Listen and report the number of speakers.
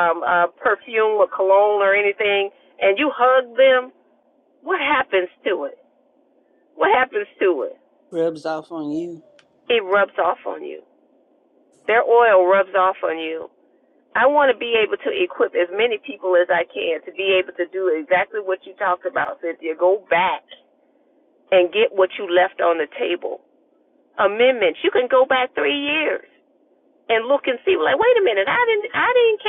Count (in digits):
2